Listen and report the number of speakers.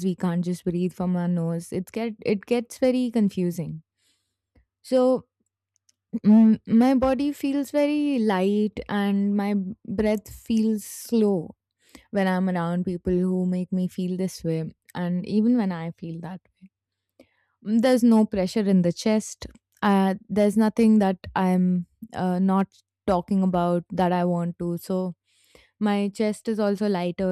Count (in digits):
1